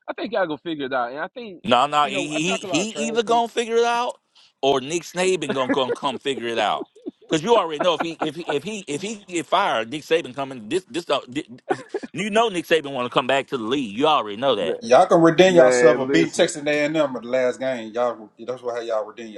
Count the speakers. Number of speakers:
three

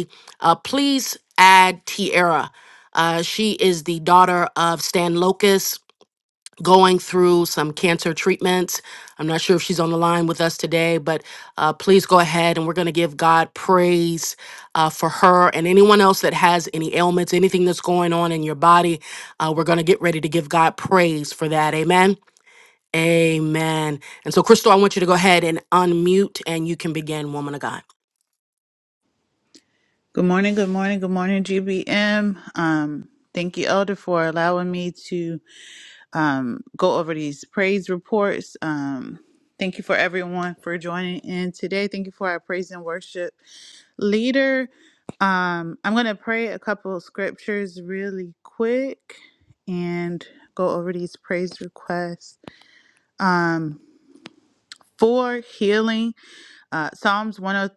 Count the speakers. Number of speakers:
two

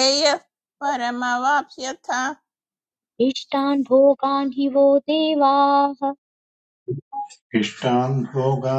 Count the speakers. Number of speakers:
three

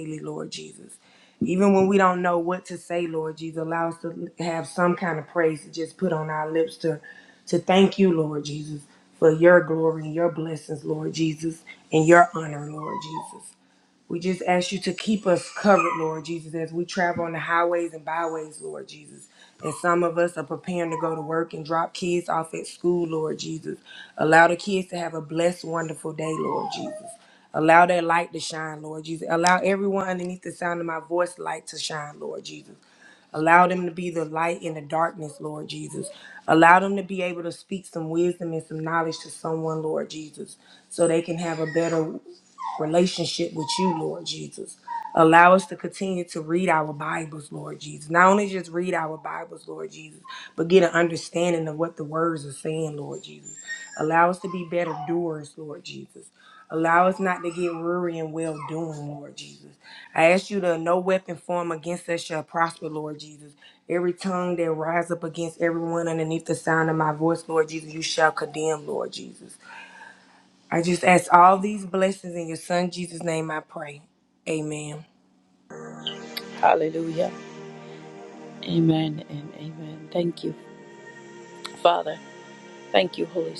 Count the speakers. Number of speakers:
two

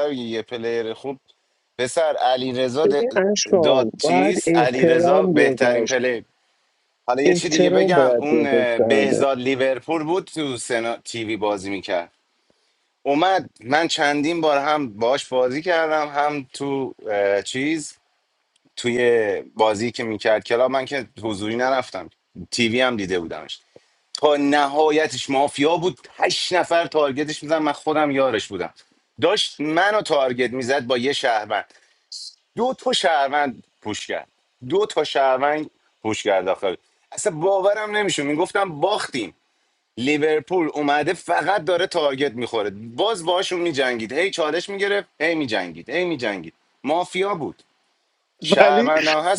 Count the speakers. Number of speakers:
two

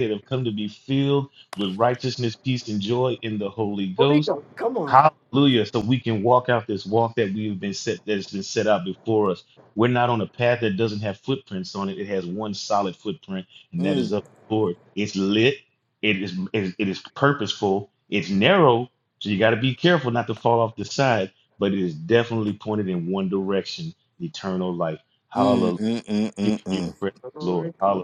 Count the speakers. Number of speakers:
three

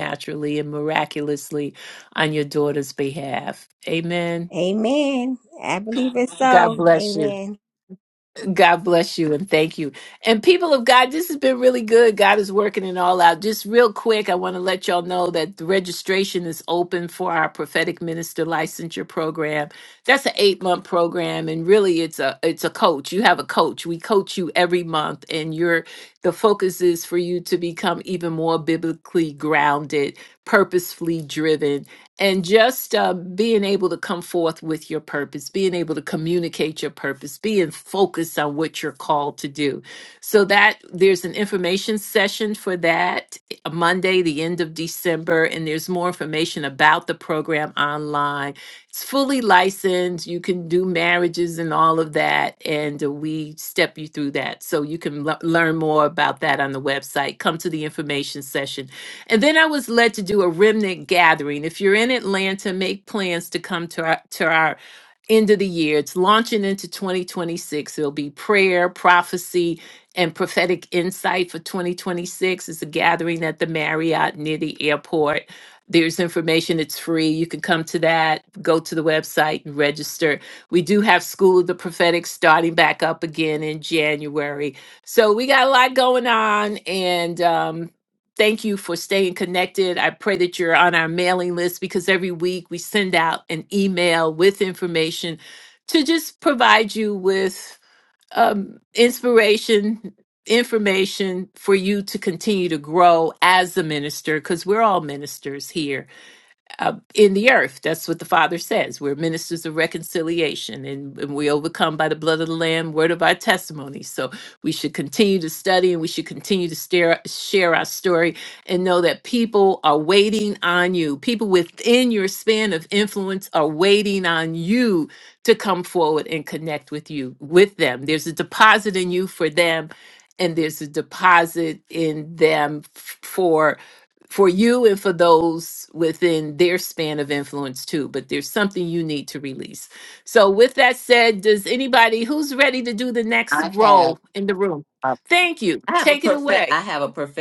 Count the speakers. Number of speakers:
three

